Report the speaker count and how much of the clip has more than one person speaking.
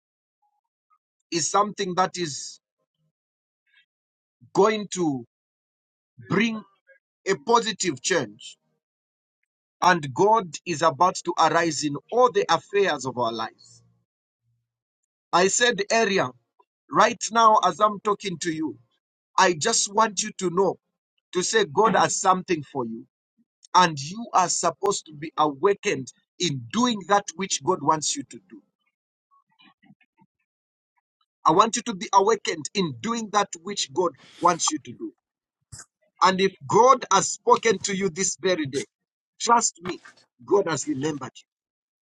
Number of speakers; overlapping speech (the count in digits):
1, no overlap